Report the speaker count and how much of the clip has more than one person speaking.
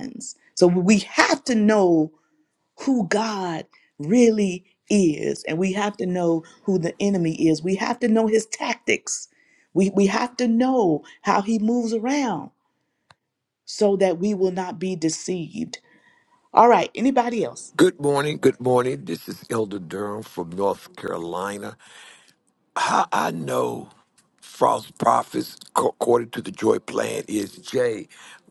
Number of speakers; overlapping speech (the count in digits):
2, no overlap